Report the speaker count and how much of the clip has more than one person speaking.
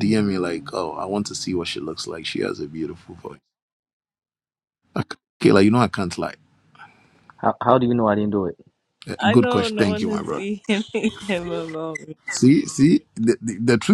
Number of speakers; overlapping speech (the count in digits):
3, about 9%